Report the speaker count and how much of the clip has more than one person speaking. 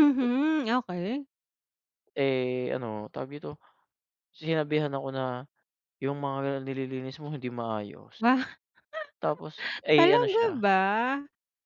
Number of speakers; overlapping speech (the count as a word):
two, about 5%